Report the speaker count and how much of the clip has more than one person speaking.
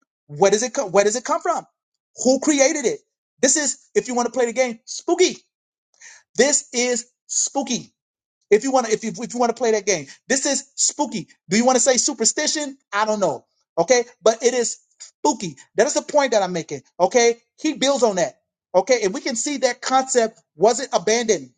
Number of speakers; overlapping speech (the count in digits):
1, no overlap